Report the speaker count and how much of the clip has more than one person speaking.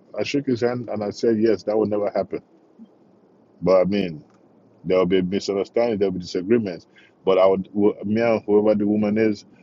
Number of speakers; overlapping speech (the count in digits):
1, no overlap